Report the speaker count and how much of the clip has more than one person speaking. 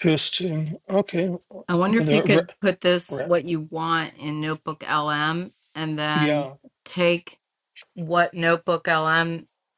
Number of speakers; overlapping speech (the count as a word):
two, about 12%